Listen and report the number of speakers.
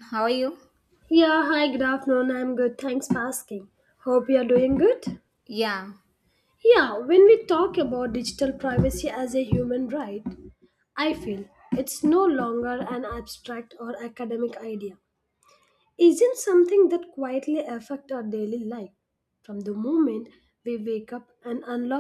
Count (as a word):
two